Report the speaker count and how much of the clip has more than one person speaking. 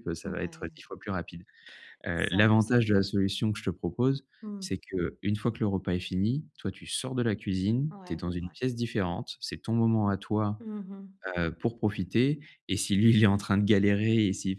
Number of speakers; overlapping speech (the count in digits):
2, about 11%